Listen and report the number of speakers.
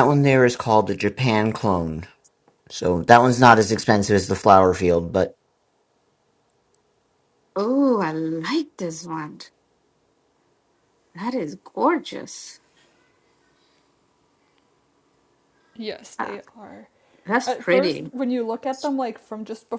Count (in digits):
3